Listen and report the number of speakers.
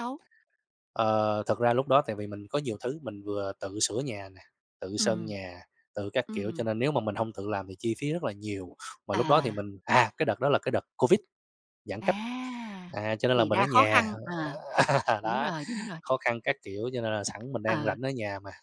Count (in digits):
2